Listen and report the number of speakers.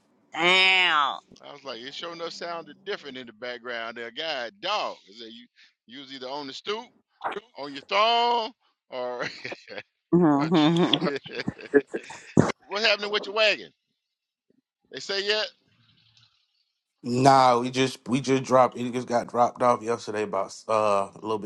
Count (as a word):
three